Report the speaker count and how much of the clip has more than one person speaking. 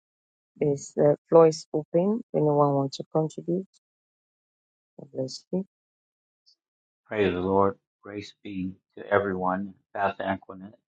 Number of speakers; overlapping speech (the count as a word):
two, no overlap